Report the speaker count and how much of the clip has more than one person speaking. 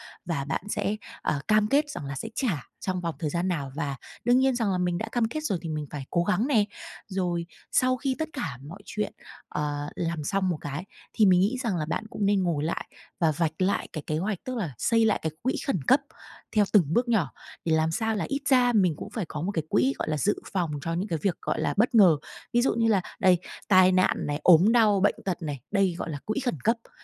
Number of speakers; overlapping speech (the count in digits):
1, no overlap